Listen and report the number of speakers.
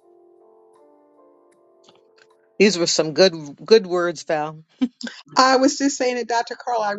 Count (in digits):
2